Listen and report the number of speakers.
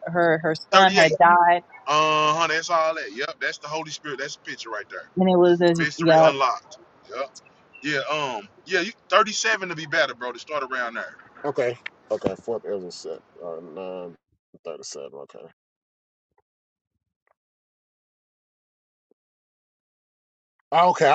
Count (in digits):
3